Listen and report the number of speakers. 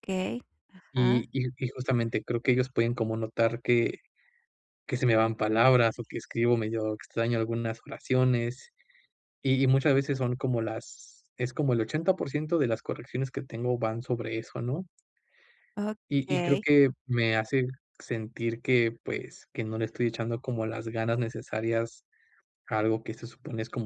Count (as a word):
two